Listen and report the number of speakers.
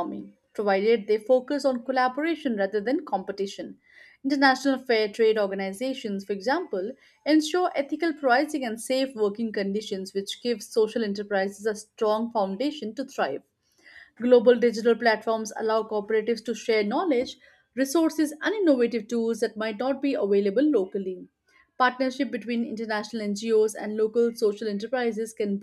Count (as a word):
one